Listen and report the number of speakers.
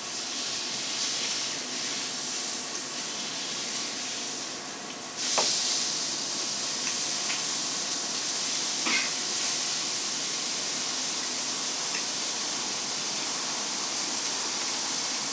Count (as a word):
zero